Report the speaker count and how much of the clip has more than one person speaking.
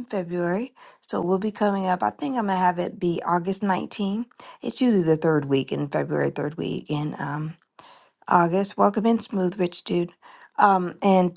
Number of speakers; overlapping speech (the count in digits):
1, no overlap